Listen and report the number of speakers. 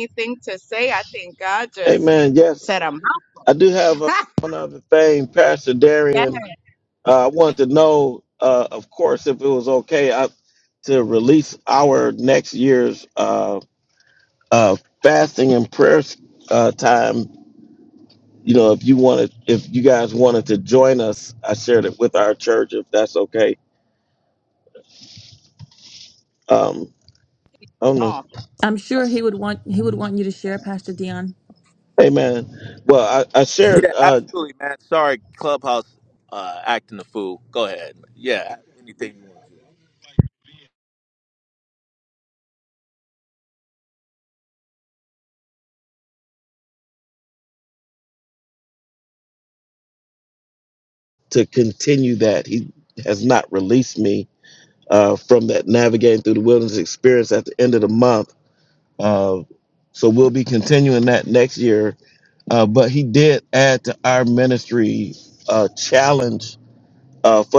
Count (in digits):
4